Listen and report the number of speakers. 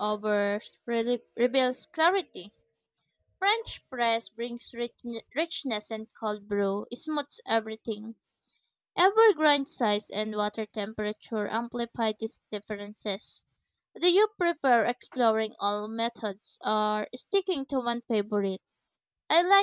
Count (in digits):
1